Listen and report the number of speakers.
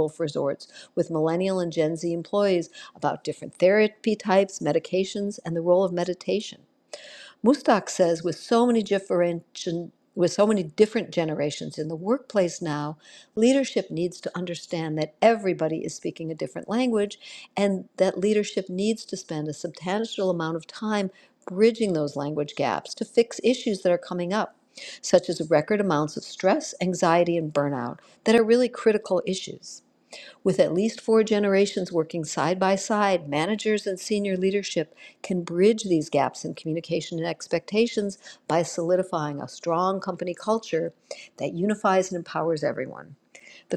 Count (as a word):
one